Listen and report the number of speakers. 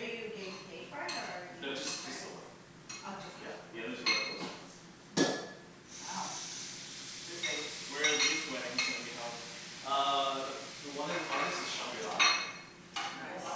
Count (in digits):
4